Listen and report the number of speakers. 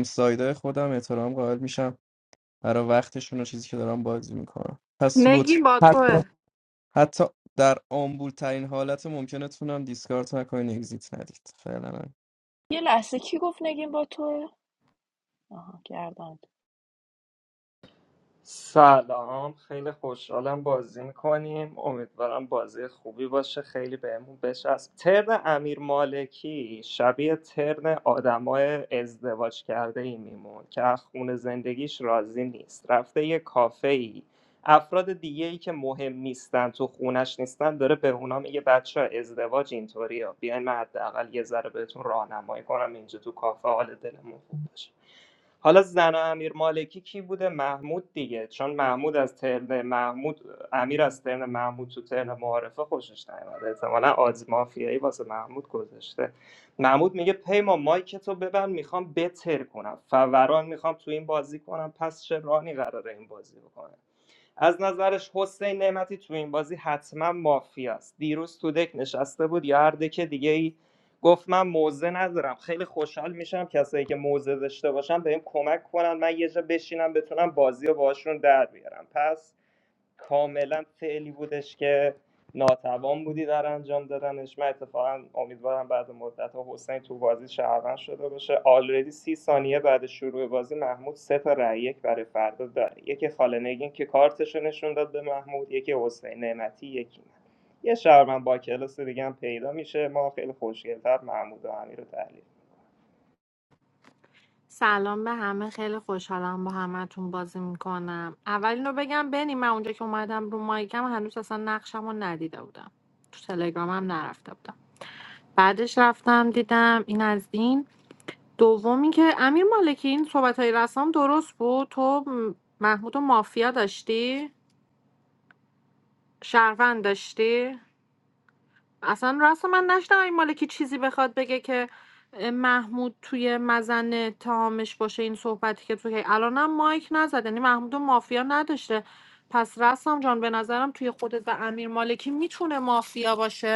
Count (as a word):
four